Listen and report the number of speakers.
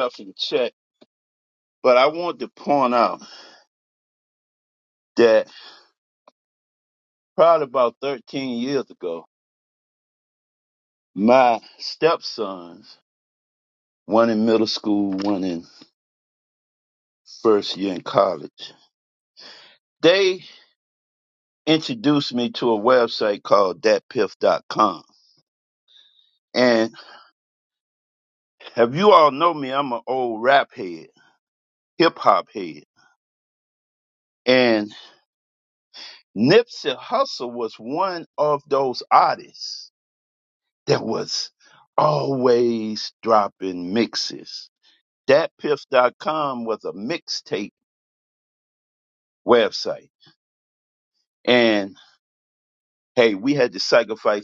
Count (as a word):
one